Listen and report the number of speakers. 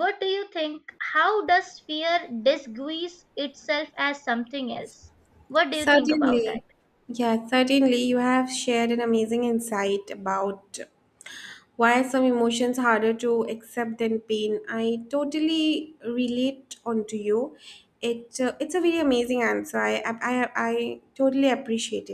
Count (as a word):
two